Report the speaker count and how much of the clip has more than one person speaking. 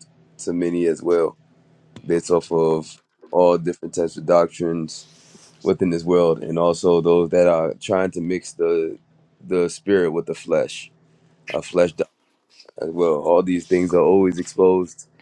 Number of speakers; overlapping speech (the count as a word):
one, no overlap